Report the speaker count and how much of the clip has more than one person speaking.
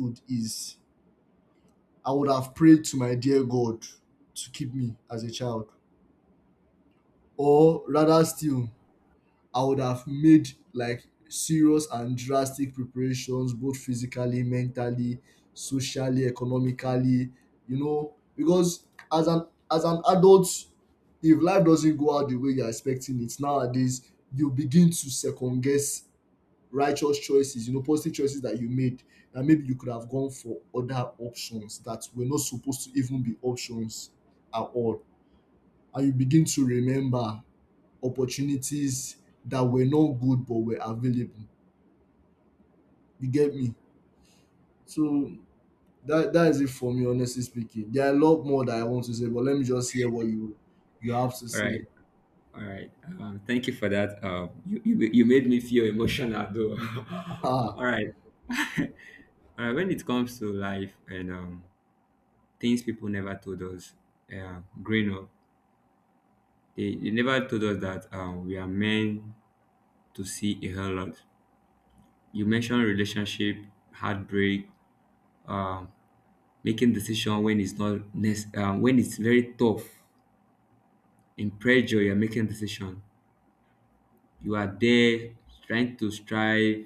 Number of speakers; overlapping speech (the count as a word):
two, under 1%